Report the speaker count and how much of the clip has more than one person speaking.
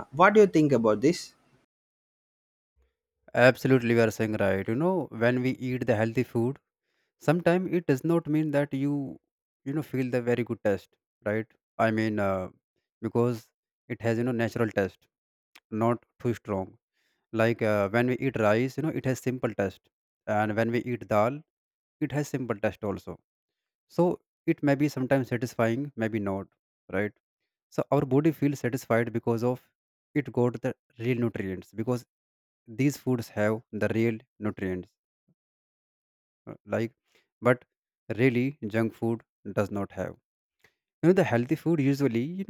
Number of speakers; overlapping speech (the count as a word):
two, no overlap